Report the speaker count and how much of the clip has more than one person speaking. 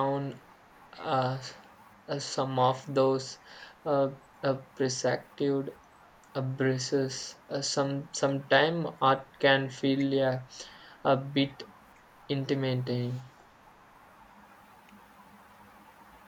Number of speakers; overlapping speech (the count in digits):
1, no overlap